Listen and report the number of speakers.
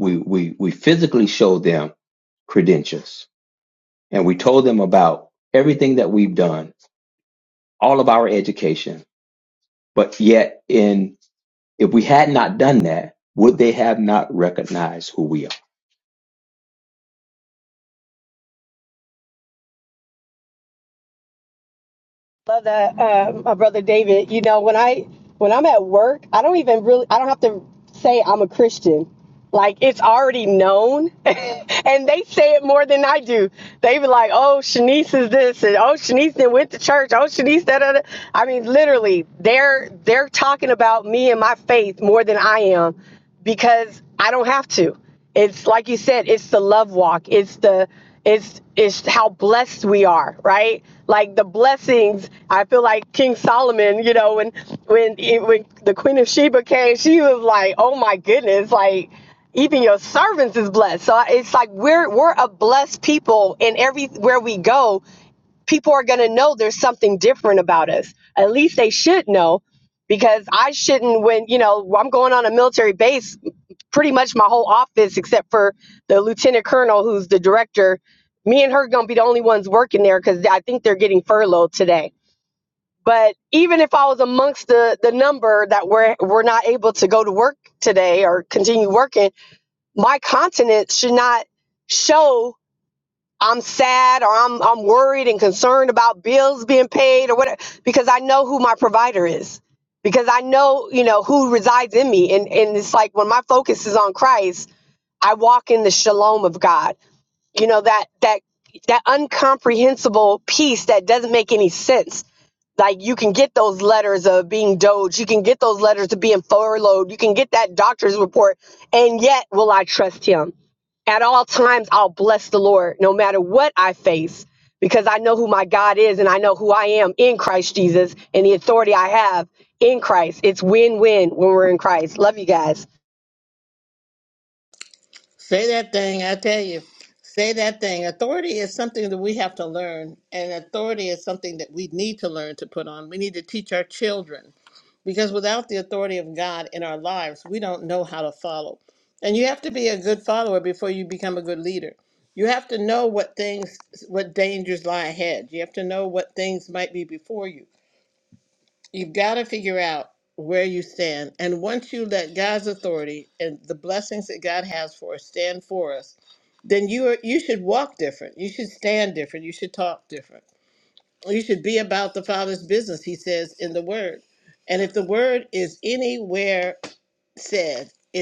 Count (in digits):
3